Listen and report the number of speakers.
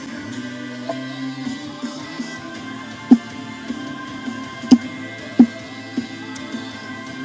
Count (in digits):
0